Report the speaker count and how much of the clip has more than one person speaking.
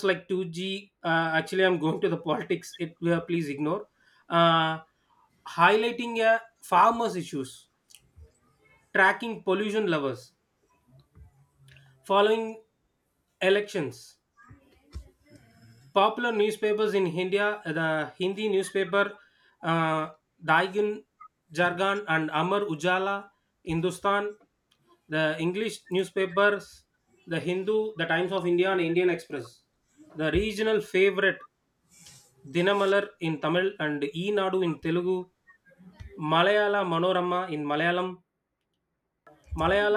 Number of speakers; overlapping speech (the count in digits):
1, no overlap